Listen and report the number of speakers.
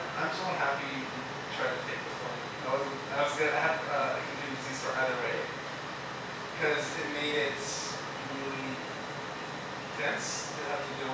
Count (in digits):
1